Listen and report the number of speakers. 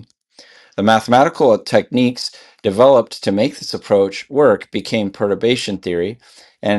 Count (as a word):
one